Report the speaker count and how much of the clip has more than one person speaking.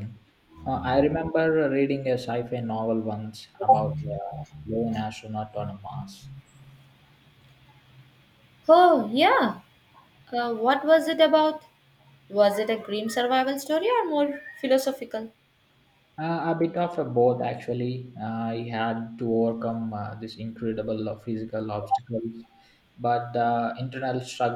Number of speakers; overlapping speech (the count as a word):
two, no overlap